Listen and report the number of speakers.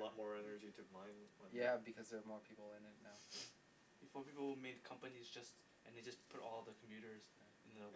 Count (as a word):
three